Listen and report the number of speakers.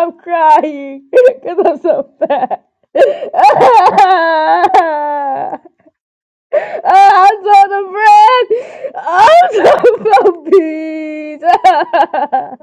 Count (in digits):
1